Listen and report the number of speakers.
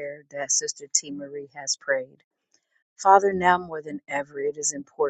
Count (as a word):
one